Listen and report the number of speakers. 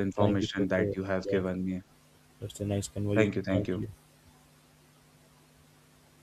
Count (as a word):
two